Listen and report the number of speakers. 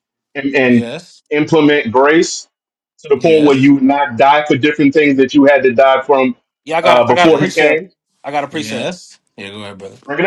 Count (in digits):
3